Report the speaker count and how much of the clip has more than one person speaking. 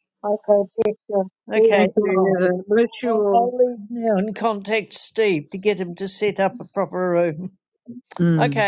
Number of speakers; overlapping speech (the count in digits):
3, about 18%